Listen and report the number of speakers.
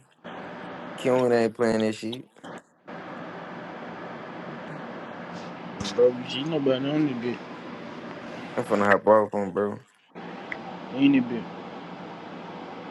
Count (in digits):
2